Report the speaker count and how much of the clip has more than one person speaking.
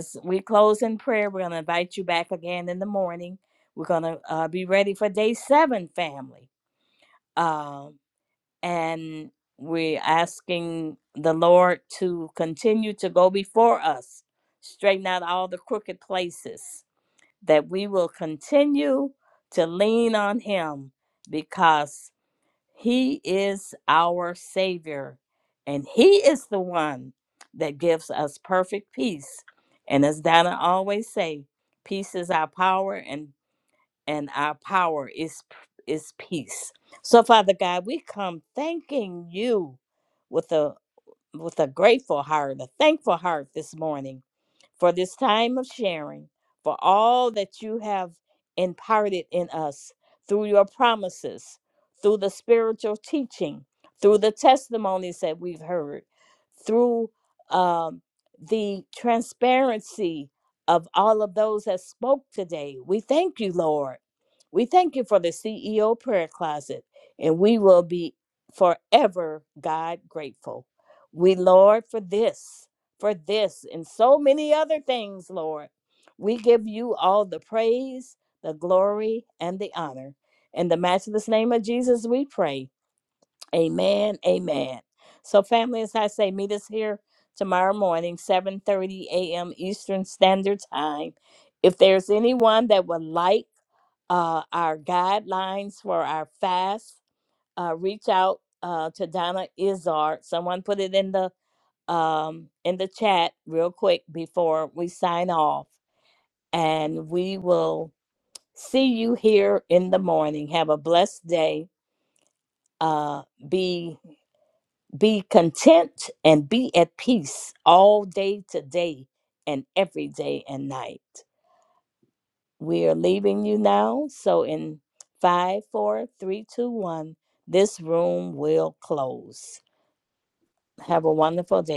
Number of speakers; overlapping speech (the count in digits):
1, no overlap